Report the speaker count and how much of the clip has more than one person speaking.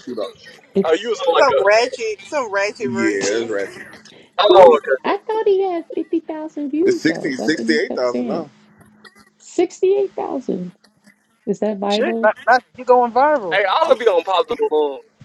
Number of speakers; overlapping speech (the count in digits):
5, about 24%